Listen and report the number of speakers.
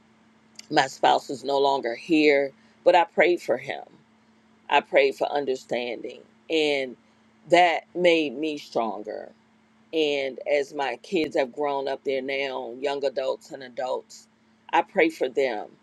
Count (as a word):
one